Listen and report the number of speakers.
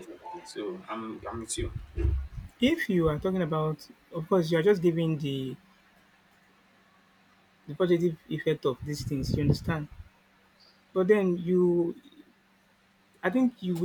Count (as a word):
two